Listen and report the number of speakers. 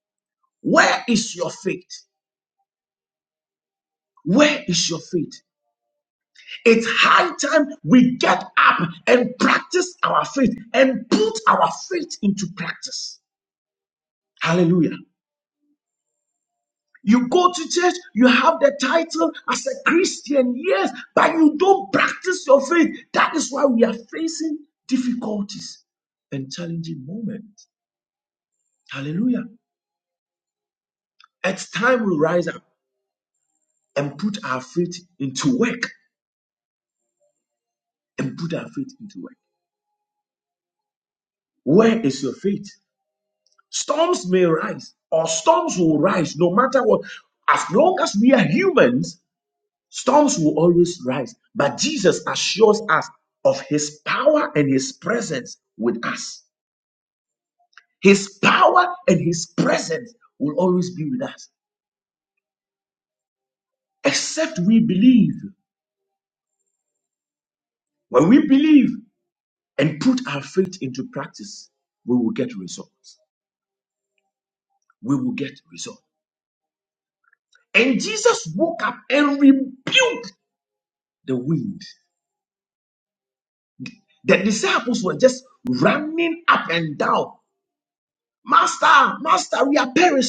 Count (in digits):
1